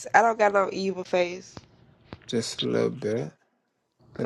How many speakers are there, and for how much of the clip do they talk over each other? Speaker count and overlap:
2, about 2%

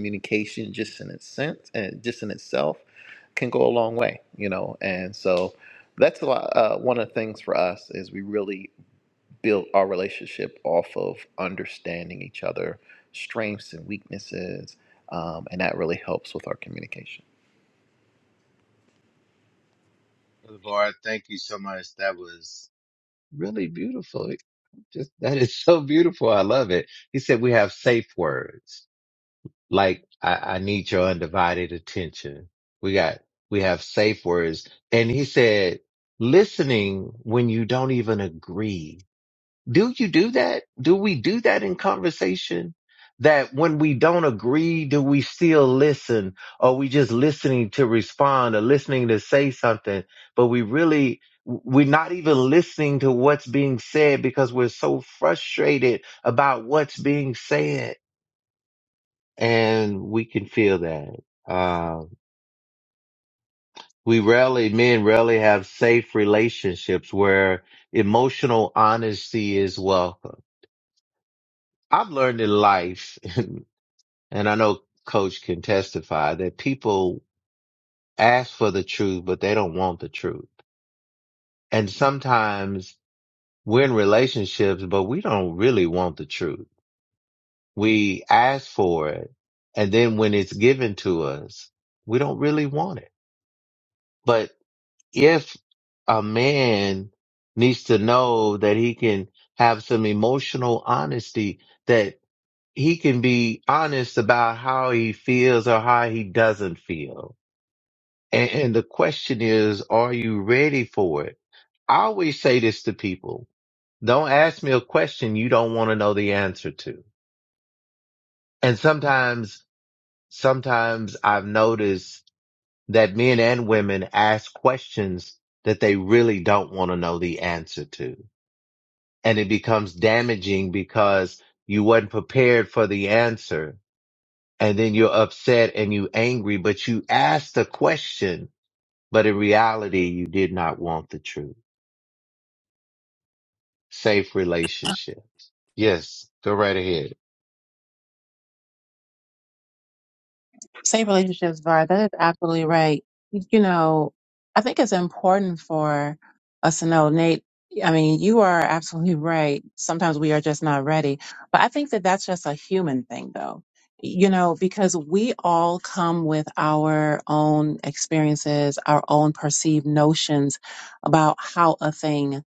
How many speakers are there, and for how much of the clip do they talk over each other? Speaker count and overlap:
3, no overlap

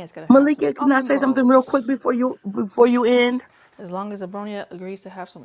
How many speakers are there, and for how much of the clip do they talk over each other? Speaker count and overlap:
2, about 29%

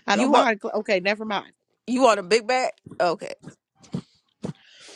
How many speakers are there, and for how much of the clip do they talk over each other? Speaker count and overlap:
2, about 6%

